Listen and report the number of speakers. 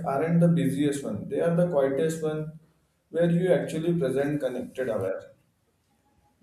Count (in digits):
1